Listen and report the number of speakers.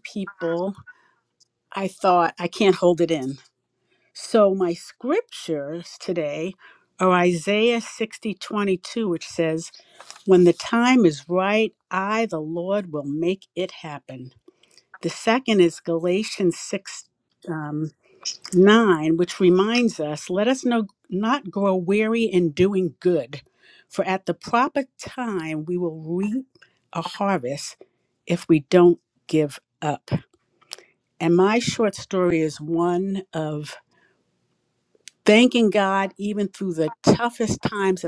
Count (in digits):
1